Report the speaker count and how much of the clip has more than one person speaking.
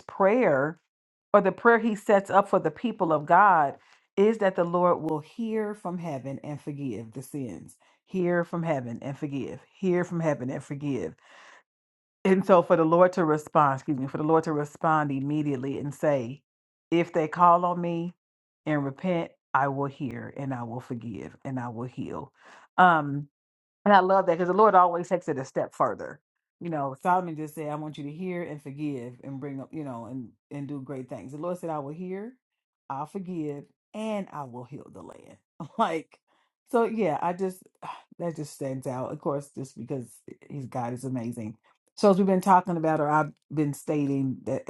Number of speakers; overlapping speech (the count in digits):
1, no overlap